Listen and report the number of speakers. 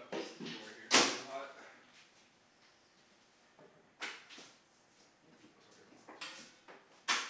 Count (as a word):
one